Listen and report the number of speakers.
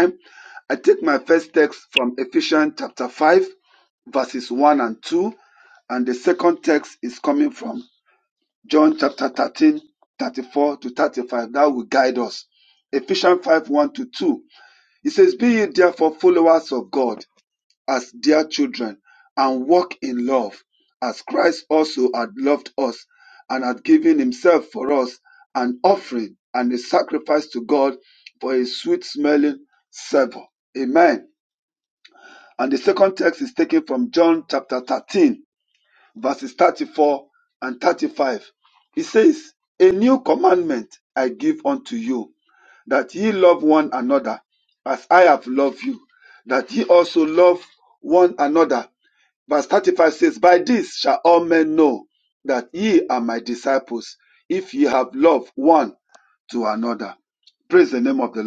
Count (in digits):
1